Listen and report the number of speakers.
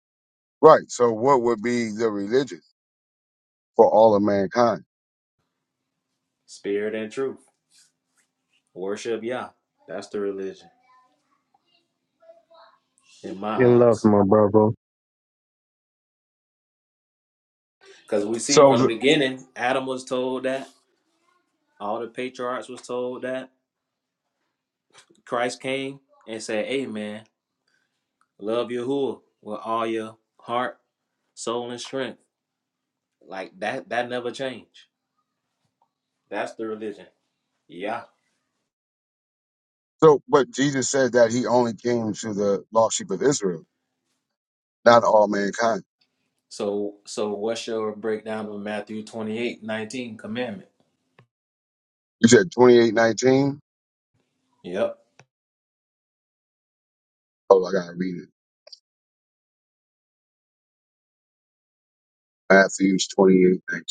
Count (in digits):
3